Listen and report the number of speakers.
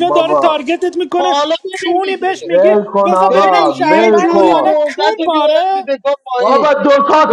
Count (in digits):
3